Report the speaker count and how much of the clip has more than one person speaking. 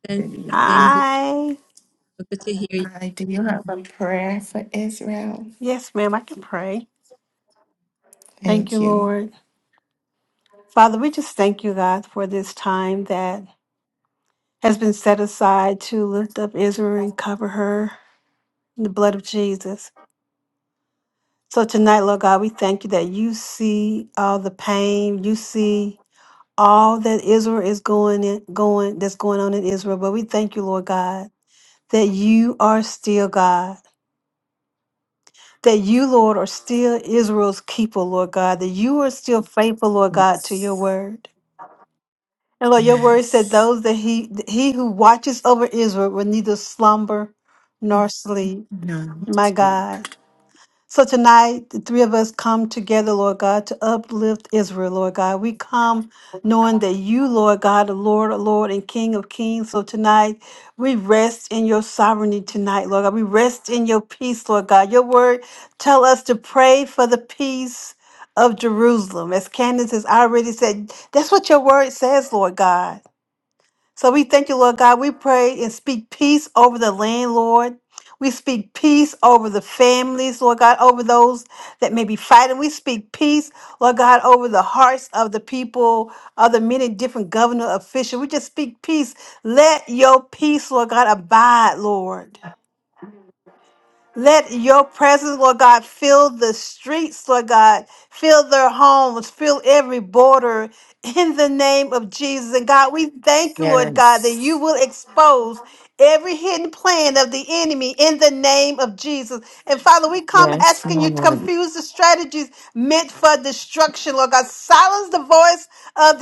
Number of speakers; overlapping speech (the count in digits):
3, about 4%